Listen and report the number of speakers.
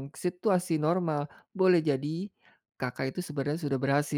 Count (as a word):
one